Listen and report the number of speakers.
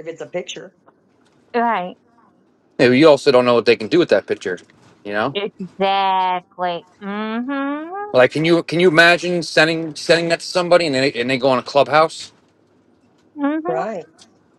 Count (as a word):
three